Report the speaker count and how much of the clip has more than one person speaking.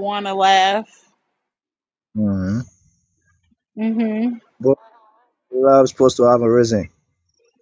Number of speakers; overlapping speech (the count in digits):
2, no overlap